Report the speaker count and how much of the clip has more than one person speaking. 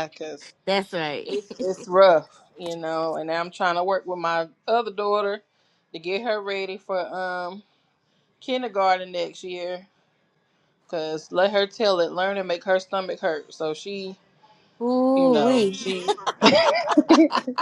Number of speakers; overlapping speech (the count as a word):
two, about 4%